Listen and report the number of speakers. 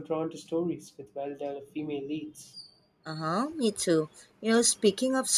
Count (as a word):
two